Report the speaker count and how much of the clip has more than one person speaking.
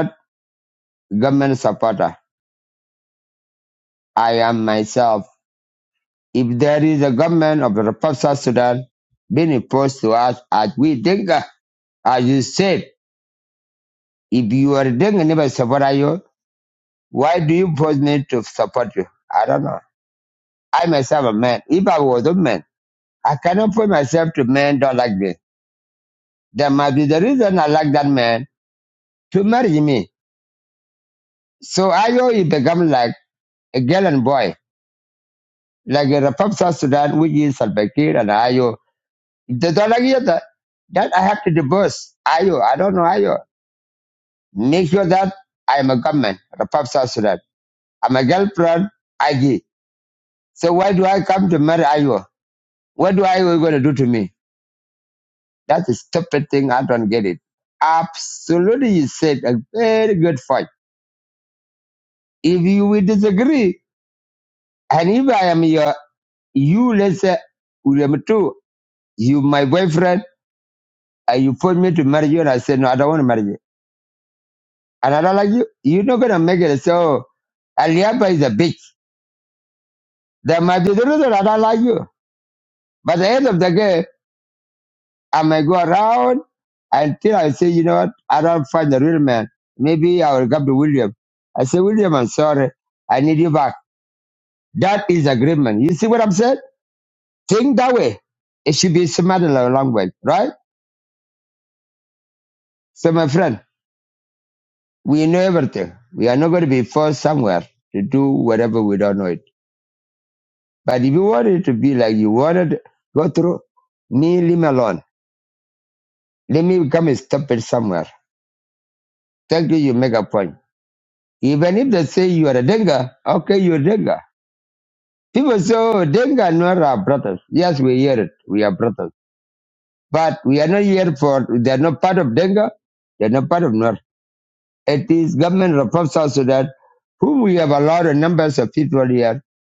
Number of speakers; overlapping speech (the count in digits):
1, no overlap